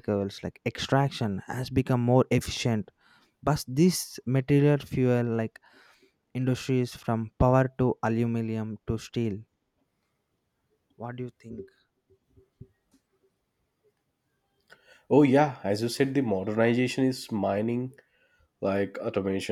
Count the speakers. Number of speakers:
two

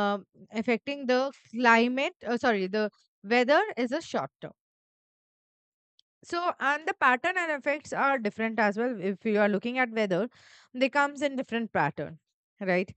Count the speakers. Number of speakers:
one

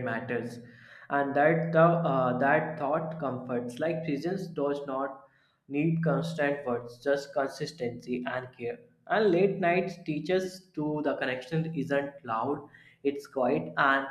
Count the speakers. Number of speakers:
one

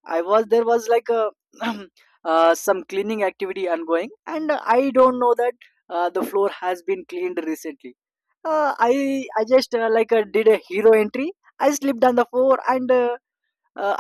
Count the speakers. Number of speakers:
one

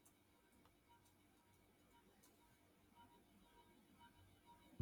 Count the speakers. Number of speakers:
zero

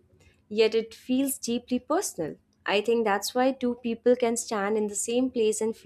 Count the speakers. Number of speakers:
one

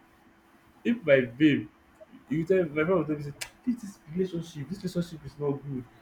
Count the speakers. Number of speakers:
one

